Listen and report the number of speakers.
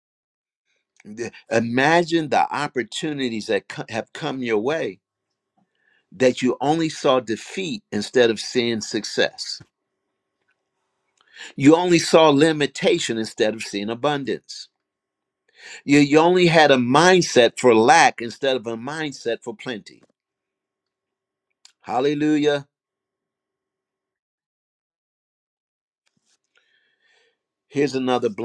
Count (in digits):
1